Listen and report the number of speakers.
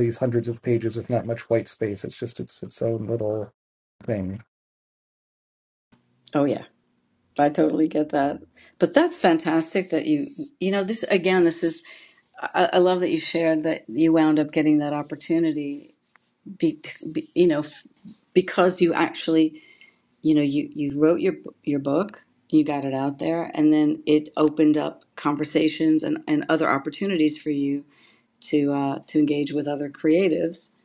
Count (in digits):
2